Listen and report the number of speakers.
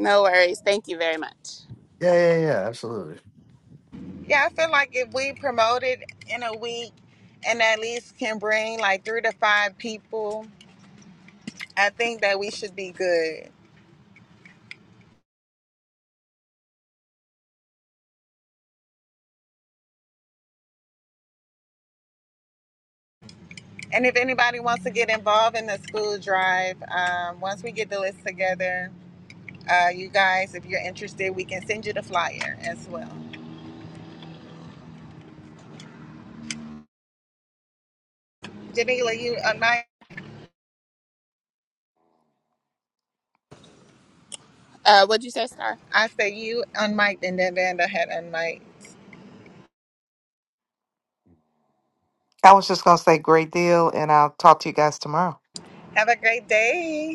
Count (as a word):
four